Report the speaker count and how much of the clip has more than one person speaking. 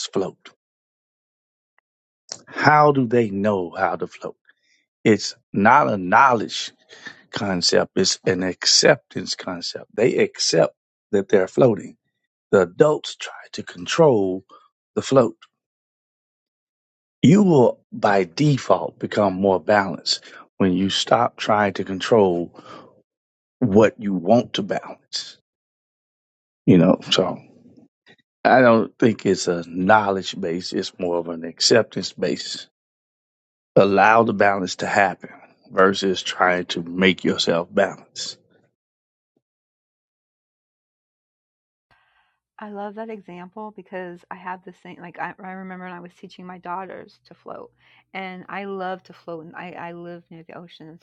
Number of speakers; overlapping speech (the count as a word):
two, no overlap